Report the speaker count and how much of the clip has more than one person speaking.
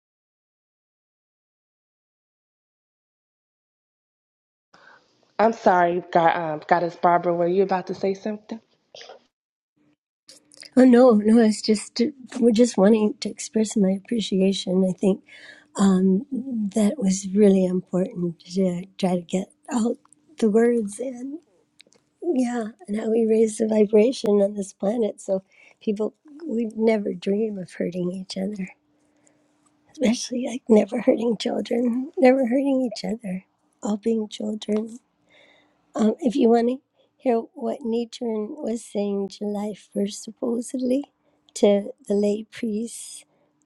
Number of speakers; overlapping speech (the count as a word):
two, no overlap